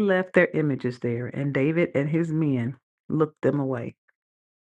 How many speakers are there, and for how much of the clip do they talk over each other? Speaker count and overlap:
1, no overlap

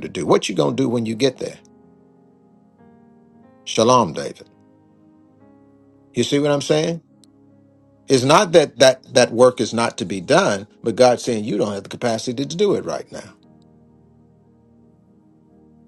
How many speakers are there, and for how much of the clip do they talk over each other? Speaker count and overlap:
1, no overlap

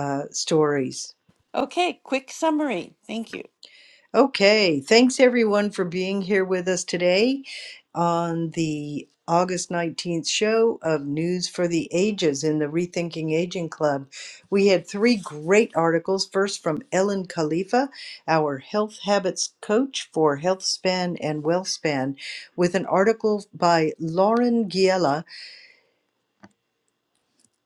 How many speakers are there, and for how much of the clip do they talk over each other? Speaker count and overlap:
2, no overlap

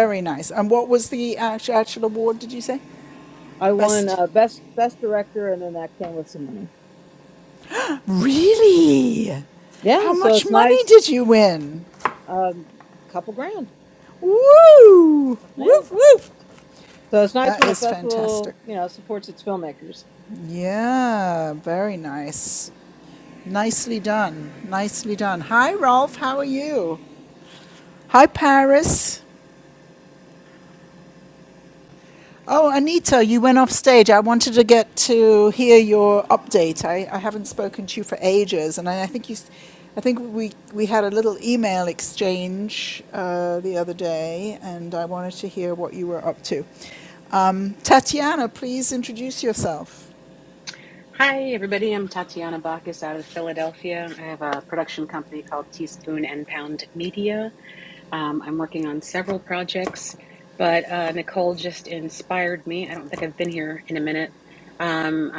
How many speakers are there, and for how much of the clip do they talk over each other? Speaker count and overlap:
3, about 4%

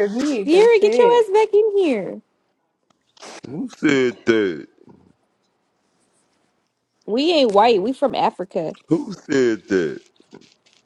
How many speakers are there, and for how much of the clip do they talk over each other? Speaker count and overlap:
3, about 7%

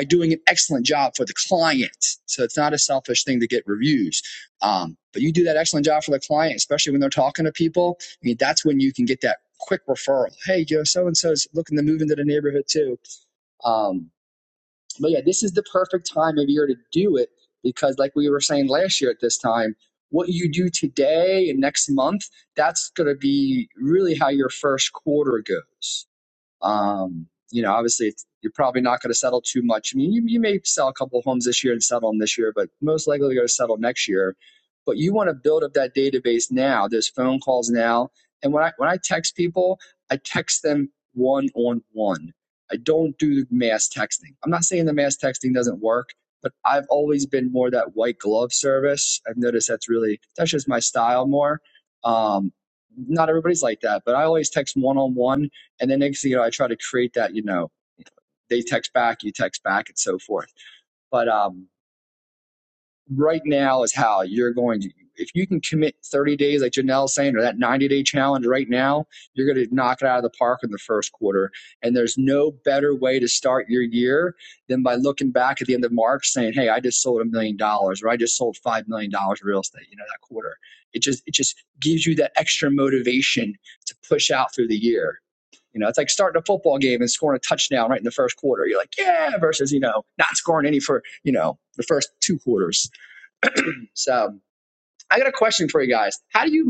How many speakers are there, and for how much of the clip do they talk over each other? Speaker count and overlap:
1, no overlap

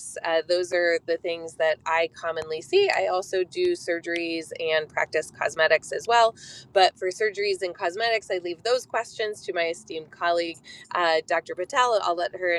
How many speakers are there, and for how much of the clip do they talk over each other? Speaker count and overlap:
1, no overlap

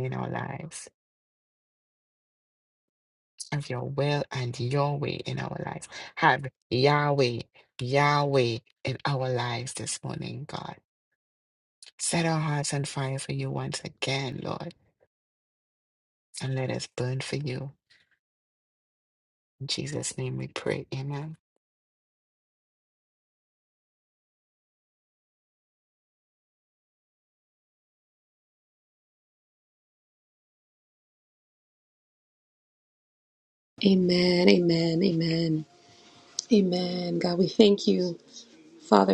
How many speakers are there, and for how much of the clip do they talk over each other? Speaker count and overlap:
2, no overlap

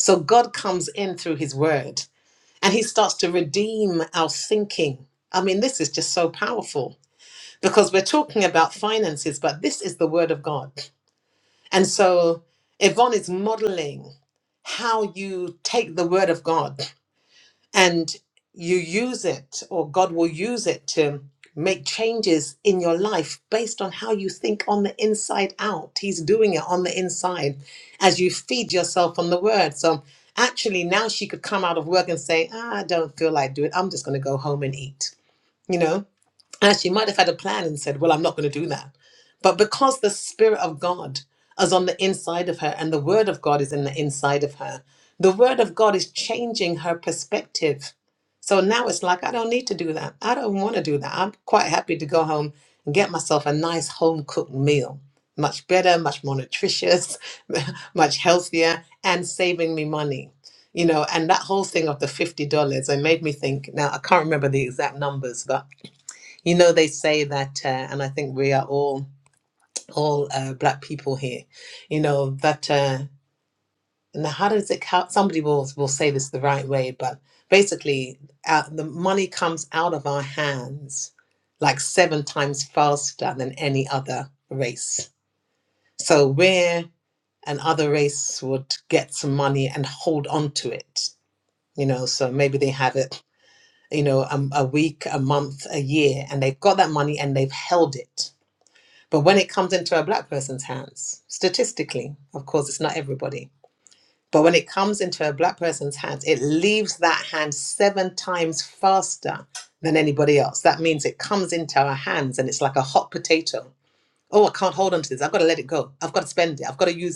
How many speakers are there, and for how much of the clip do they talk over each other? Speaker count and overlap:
1, no overlap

